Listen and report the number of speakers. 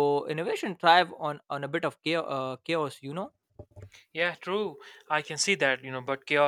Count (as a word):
two